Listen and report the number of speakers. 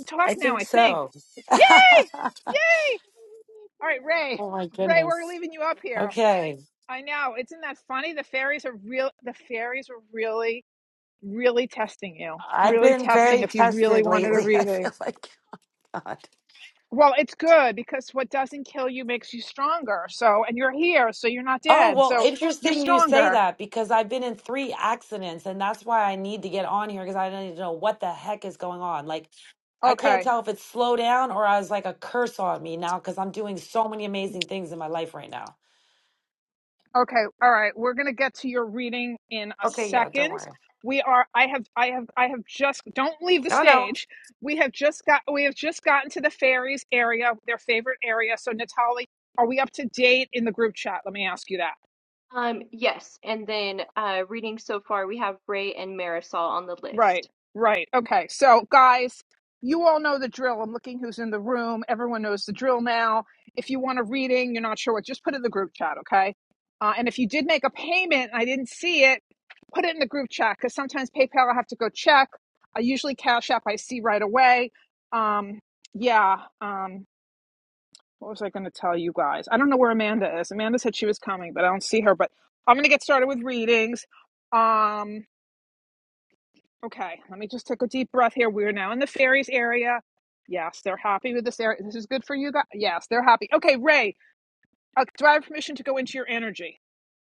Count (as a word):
three